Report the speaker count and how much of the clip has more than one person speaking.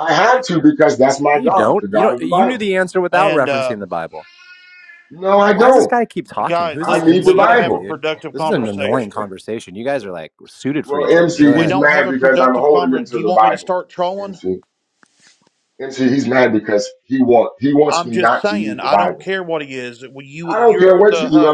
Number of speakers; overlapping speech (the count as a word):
three, about 47%